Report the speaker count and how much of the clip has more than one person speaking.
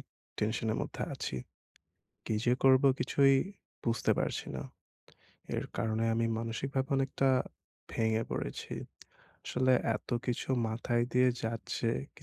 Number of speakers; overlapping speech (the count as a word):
one, no overlap